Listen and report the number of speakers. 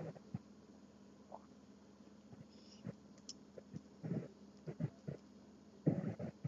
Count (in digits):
0